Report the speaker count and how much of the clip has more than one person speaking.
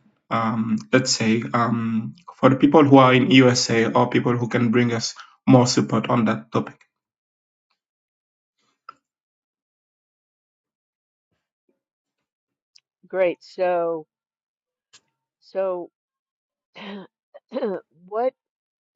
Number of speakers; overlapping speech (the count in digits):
2, no overlap